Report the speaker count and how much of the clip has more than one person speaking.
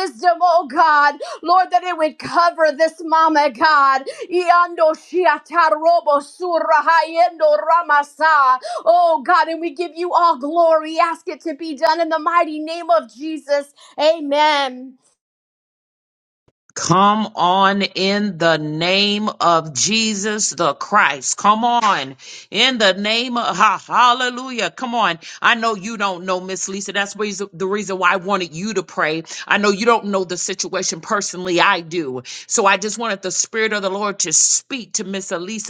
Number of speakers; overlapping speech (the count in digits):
2, no overlap